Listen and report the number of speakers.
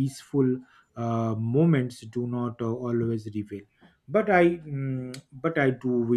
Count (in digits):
1